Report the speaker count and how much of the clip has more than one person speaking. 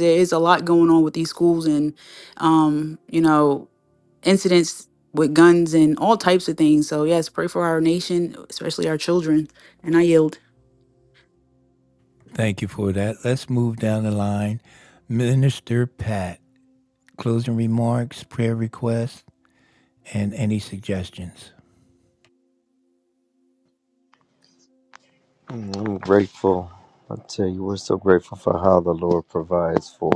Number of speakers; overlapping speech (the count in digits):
3, no overlap